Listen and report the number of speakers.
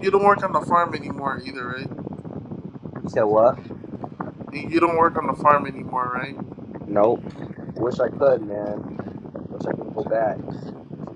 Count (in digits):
2